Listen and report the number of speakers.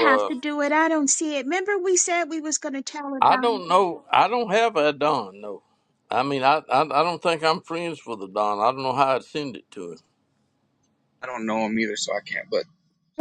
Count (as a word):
three